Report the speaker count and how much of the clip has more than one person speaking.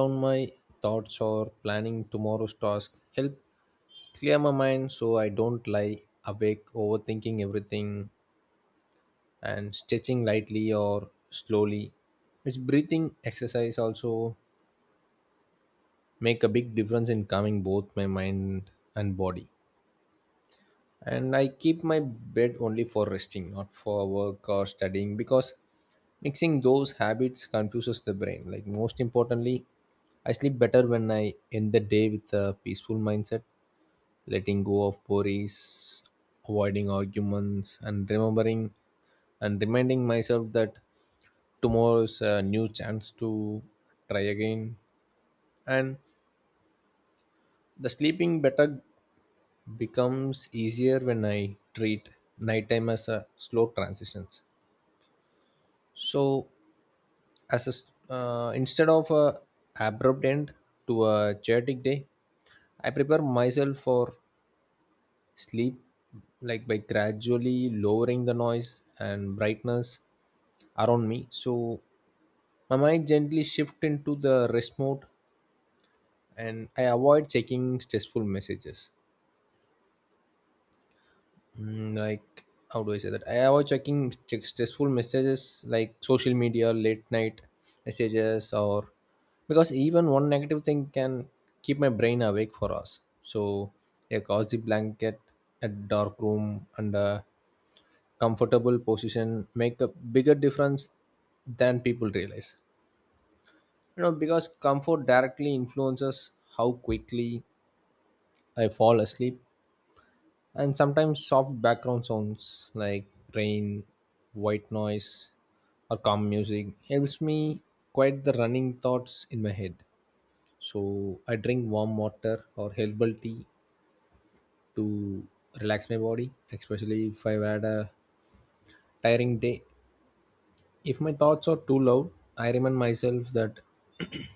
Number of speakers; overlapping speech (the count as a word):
one, no overlap